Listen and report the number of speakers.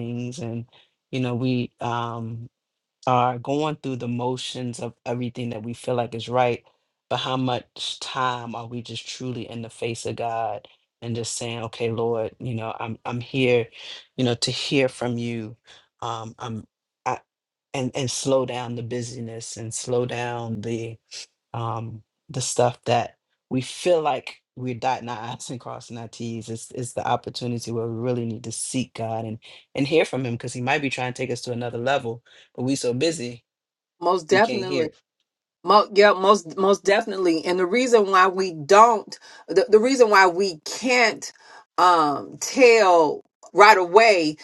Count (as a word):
two